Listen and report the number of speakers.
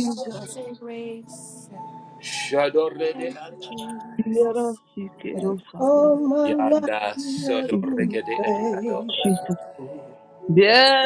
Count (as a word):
four